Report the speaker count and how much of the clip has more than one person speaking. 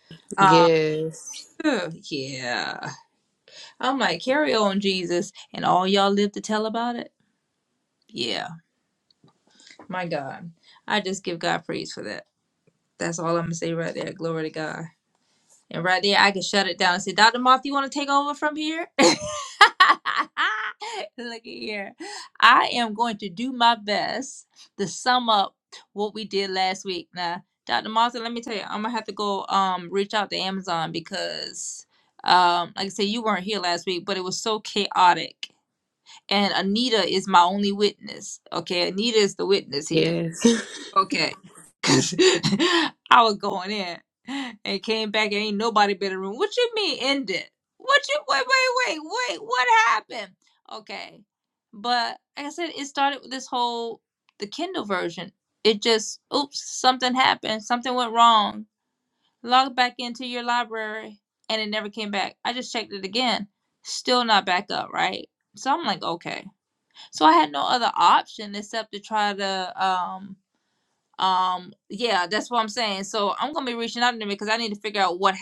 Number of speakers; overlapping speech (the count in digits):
2, about 1%